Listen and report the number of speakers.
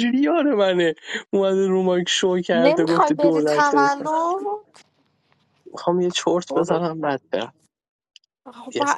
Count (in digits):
2